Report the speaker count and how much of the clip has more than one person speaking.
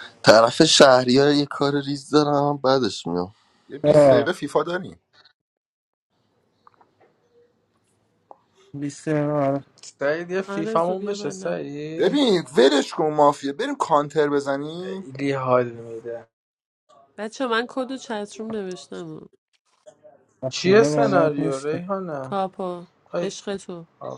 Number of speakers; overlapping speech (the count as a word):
five, about 14%